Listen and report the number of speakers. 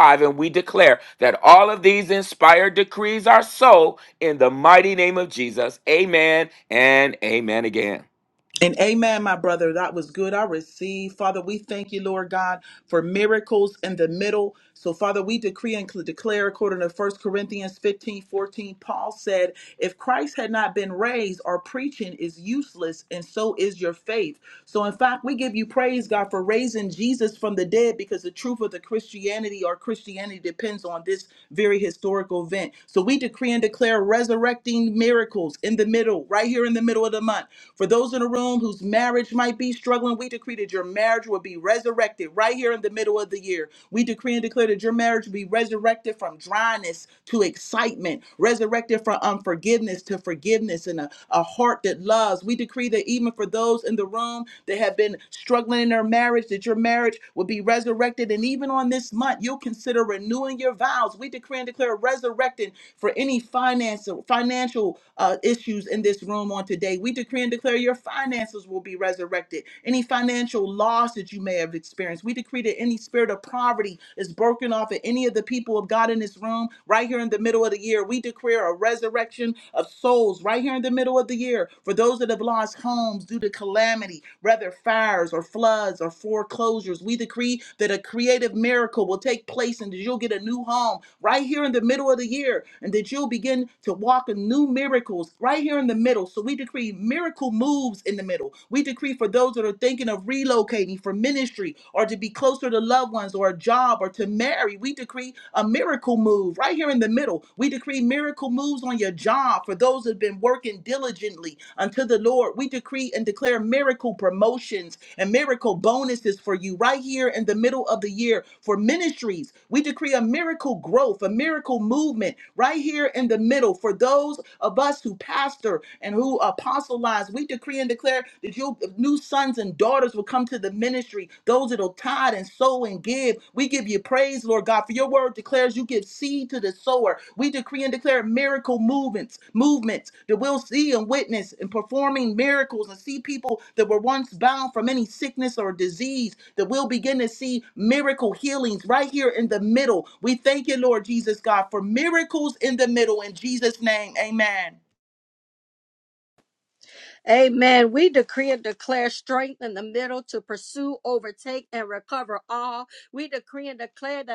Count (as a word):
three